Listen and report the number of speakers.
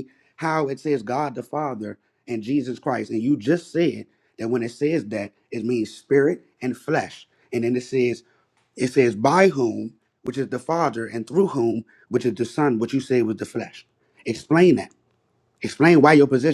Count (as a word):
one